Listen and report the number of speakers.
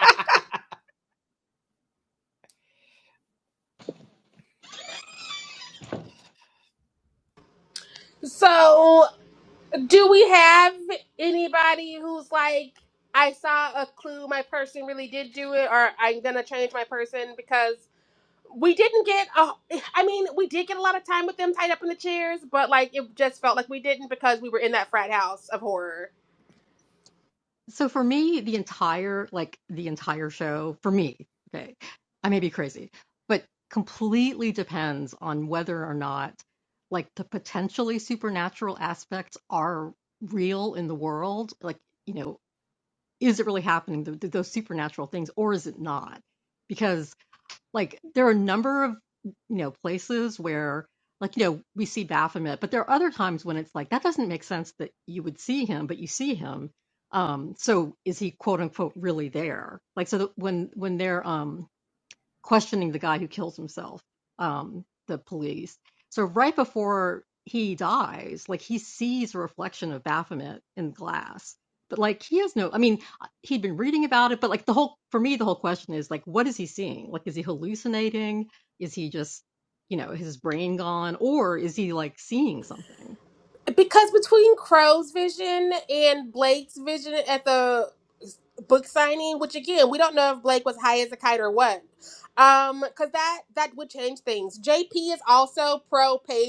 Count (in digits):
2